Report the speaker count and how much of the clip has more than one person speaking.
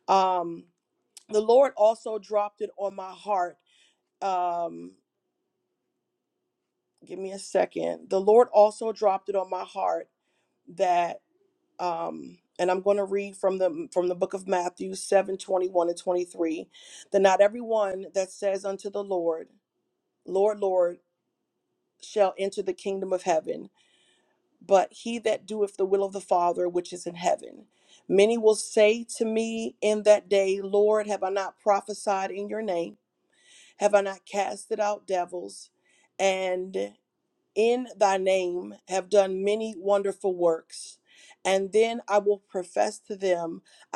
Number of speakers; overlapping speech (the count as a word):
one, no overlap